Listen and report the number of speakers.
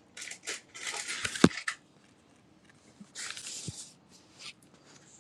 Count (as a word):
zero